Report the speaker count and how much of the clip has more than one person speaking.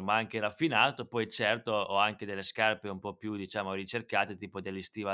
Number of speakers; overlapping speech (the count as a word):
one, no overlap